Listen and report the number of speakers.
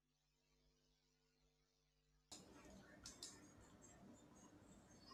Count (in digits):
0